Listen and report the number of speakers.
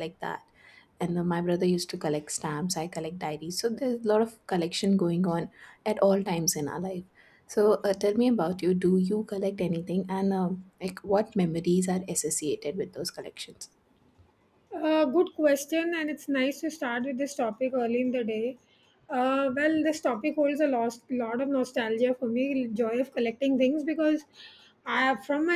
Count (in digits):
2